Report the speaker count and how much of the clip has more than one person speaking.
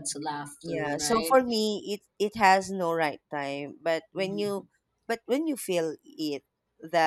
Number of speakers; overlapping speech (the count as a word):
two, about 17%